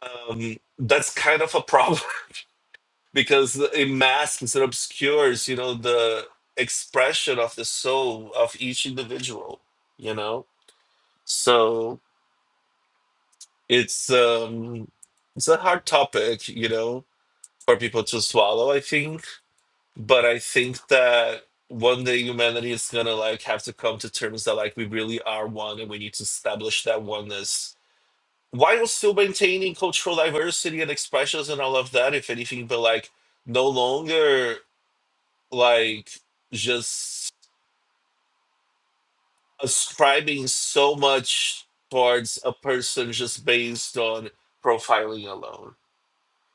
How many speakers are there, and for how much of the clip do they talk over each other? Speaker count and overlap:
1, no overlap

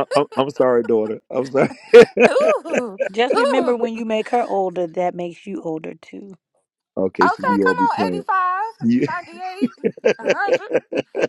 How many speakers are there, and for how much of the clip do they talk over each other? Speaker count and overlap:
3, about 16%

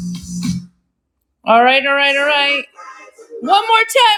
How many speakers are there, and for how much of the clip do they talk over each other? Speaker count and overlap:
1, no overlap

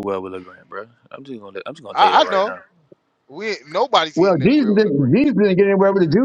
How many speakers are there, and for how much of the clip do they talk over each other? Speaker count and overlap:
3, about 25%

